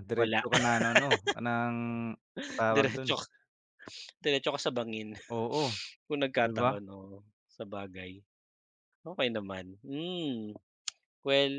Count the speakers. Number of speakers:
2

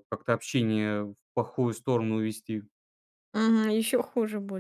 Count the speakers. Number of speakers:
2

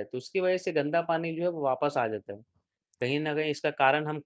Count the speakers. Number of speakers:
1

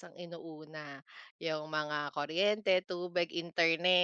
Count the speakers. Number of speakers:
1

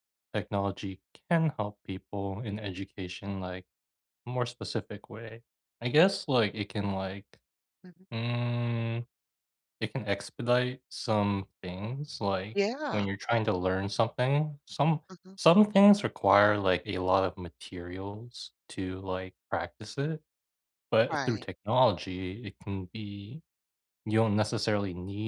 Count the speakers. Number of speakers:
2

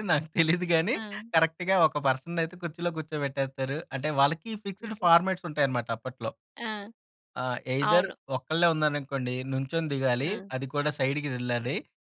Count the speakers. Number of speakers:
2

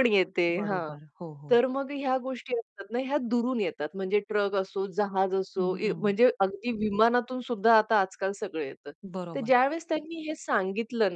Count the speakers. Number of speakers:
2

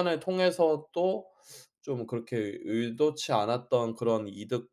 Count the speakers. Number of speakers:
1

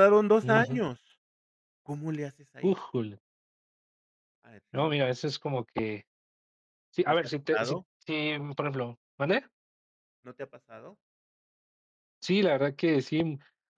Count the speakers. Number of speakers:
2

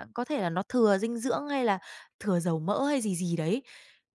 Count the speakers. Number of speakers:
1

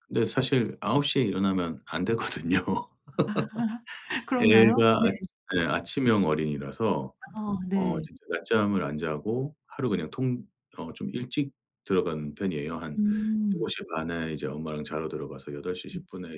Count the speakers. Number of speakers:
2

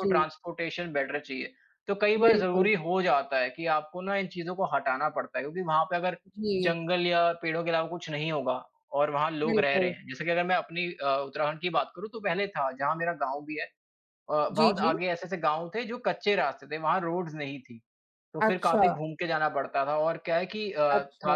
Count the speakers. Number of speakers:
2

